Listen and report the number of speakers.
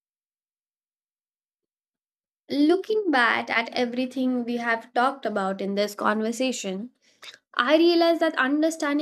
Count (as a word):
one